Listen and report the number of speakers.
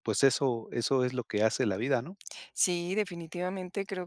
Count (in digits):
2